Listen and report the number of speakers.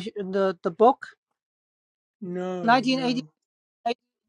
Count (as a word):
two